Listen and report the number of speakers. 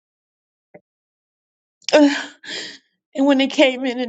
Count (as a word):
one